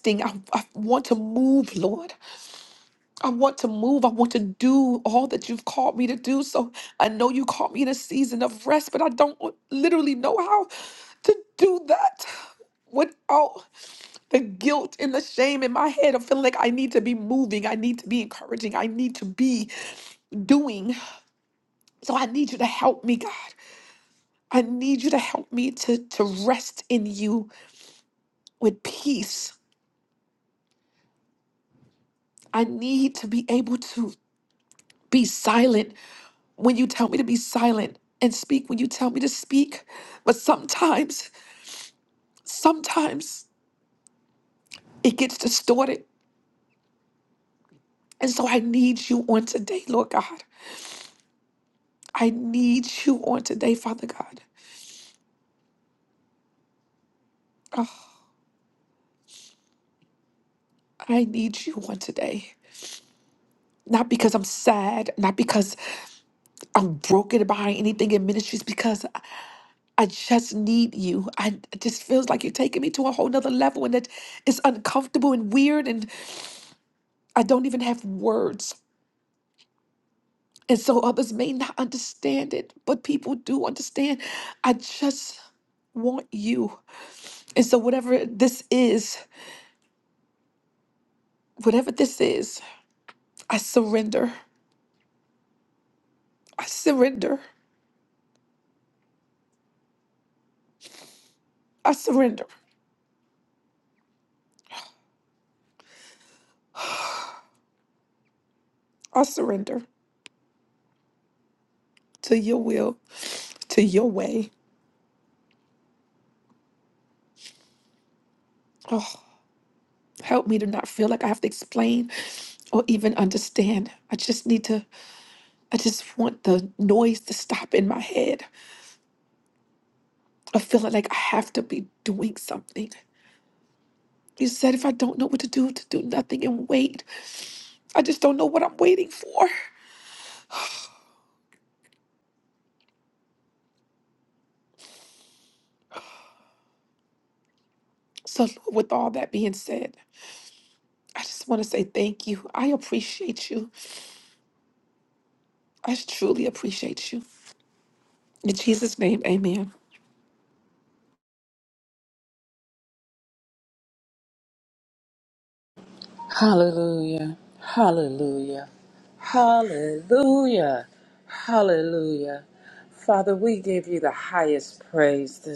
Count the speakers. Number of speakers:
two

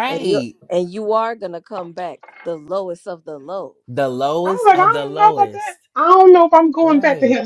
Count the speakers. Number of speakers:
three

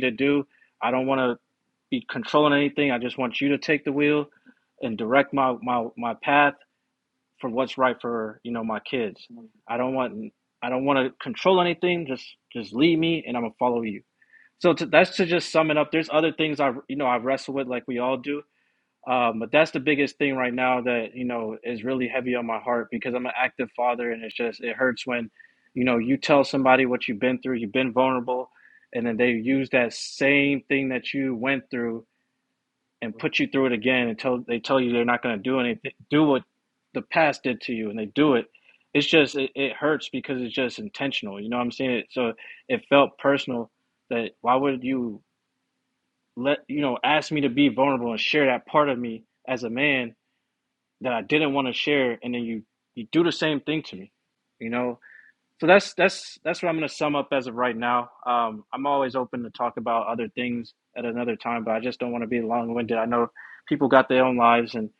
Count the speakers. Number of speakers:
one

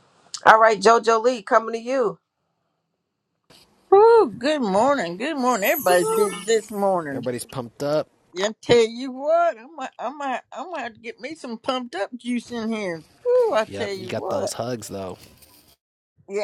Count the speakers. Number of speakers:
three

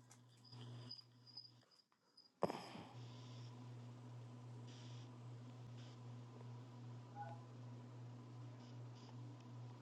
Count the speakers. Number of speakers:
zero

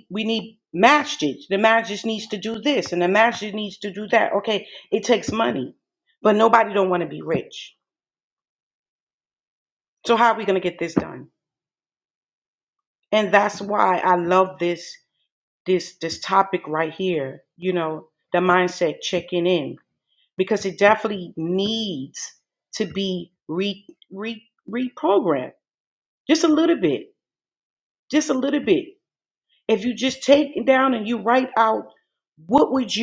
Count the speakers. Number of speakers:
one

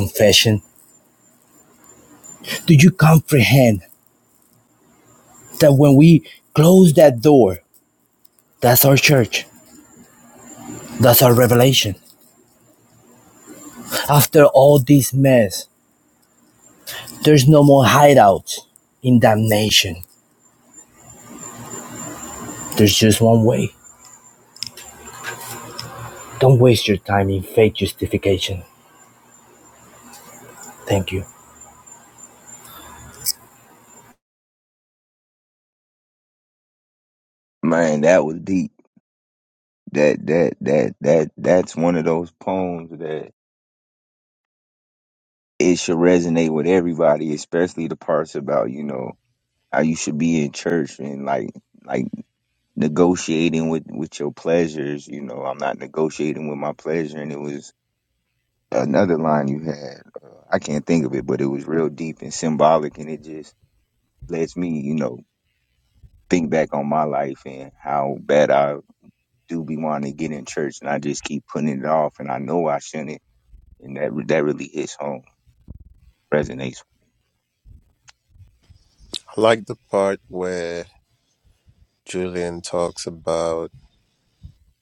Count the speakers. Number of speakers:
three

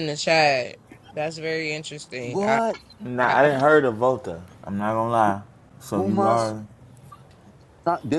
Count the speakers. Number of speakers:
three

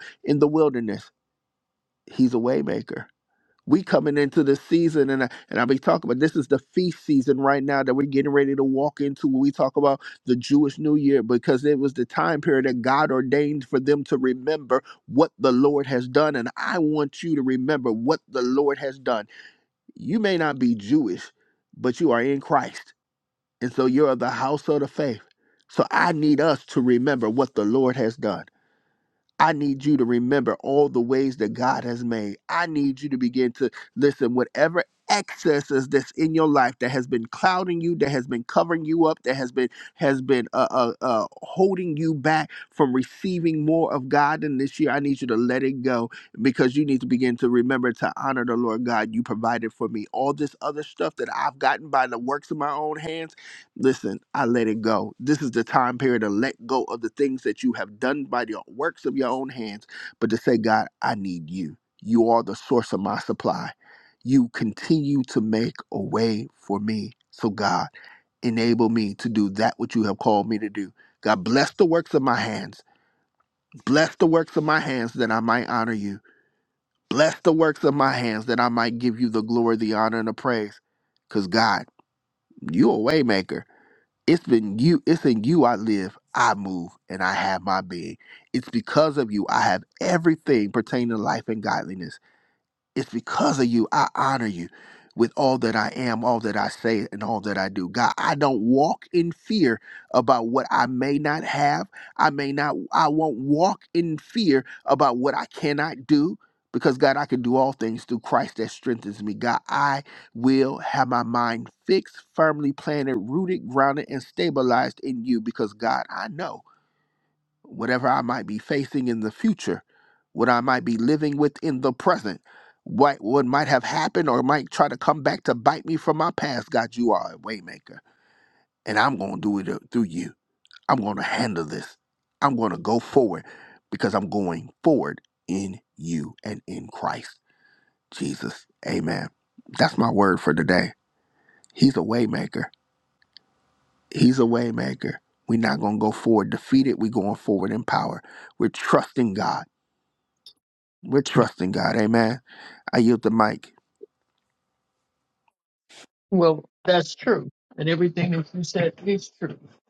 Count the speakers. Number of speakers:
two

